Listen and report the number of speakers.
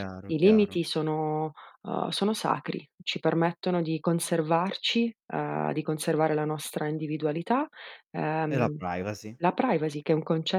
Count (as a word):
two